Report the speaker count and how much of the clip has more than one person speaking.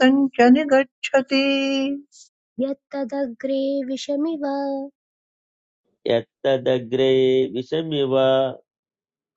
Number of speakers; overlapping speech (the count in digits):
3, no overlap